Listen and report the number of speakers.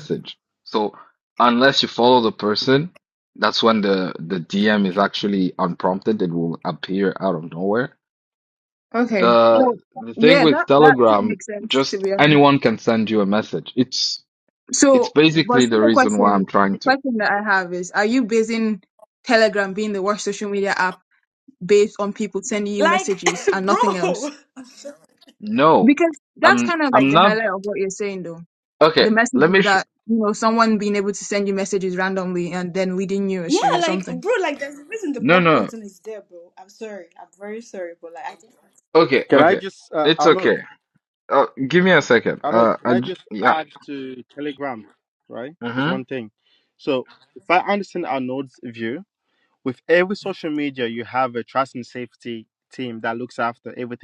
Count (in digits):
4